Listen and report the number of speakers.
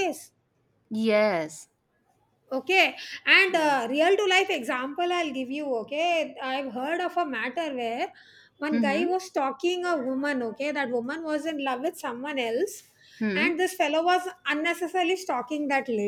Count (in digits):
2